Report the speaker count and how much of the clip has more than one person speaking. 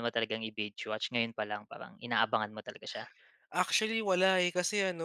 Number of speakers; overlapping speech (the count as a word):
two, no overlap